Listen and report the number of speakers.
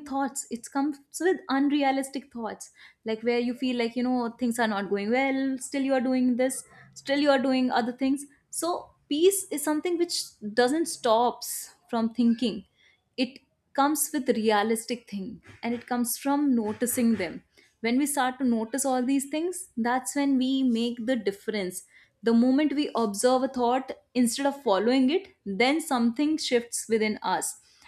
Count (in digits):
1